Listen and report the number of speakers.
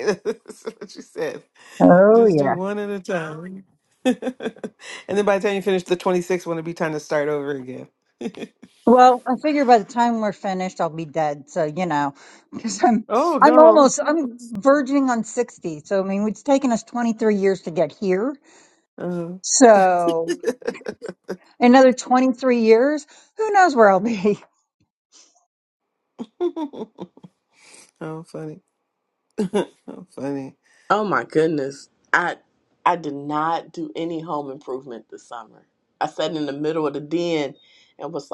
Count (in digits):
3